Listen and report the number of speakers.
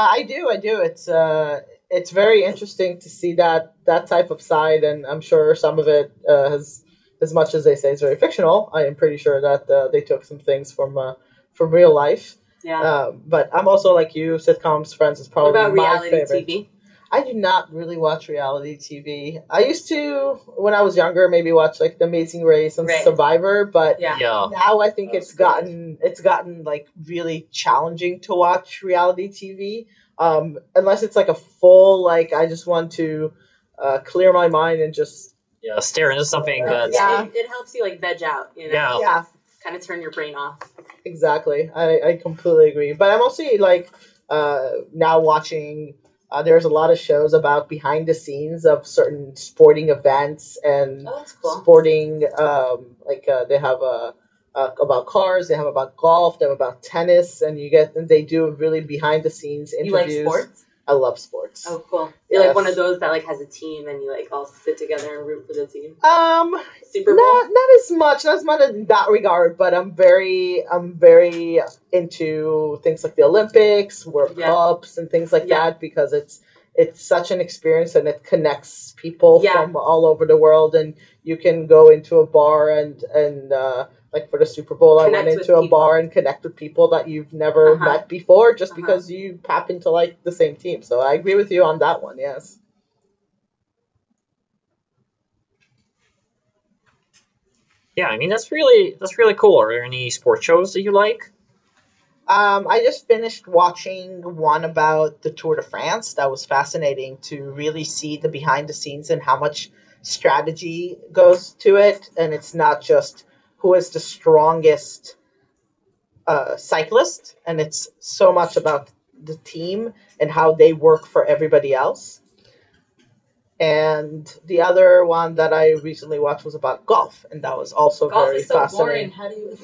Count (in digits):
3